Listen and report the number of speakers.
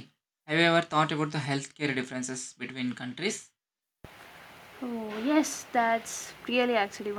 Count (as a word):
two